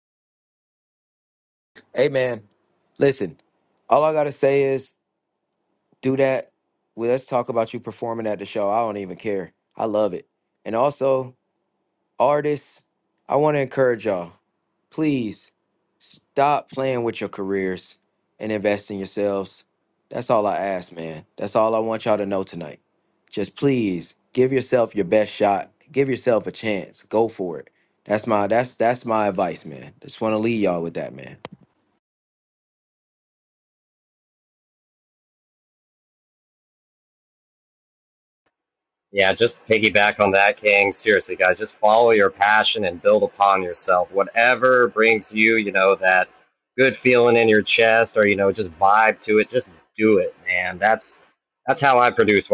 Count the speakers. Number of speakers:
two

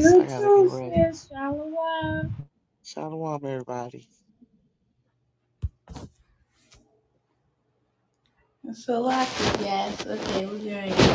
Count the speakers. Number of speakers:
three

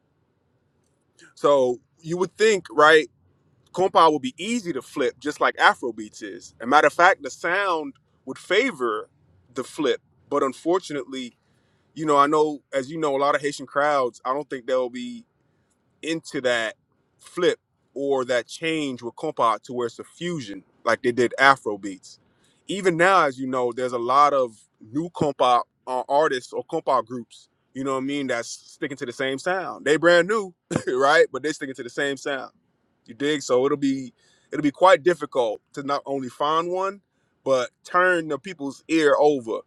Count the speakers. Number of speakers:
one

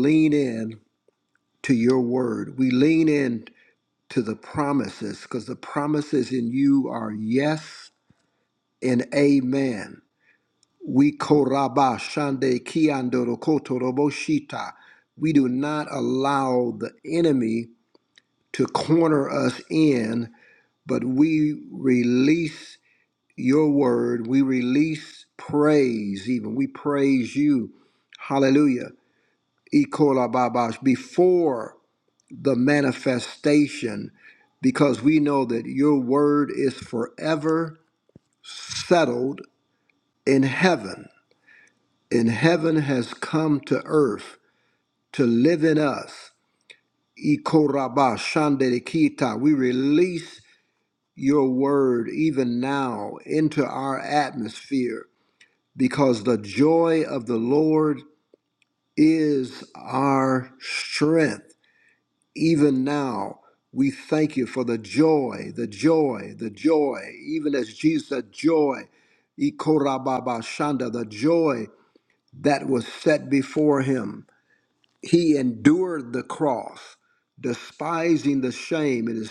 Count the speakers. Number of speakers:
one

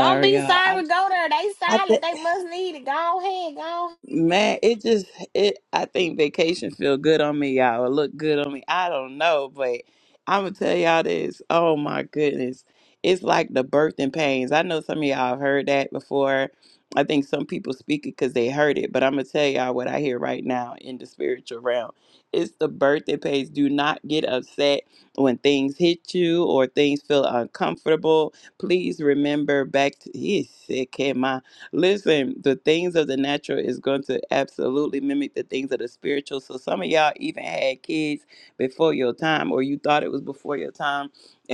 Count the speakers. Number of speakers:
two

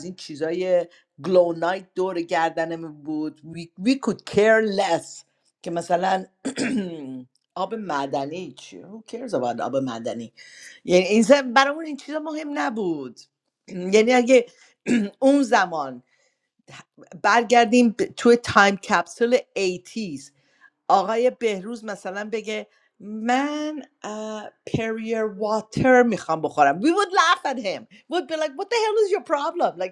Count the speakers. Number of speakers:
one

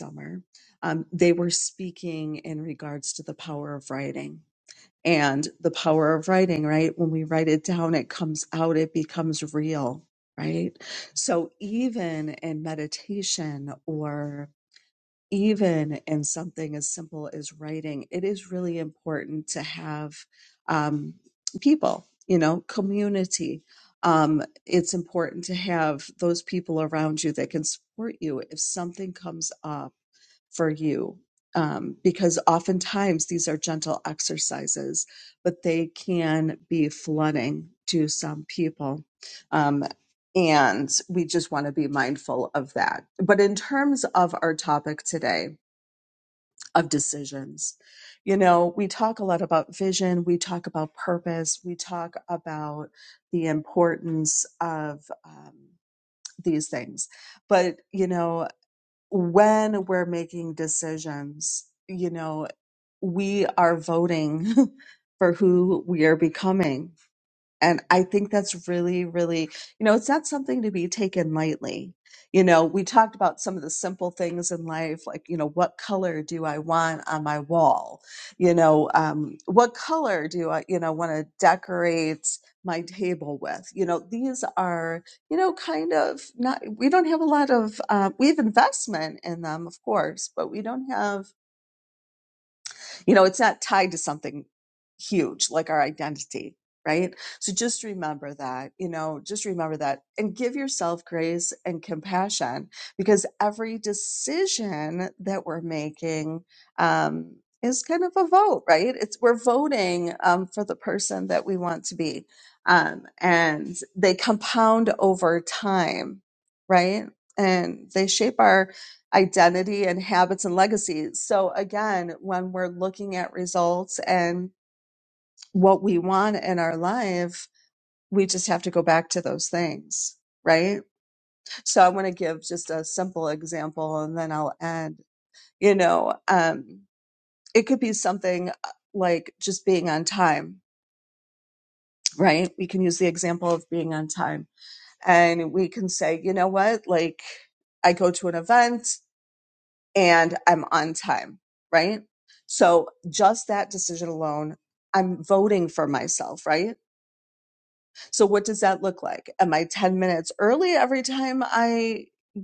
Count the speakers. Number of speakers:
one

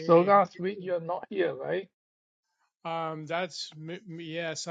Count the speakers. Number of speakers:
two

